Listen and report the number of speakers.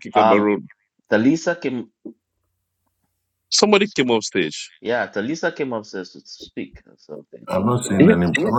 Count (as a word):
three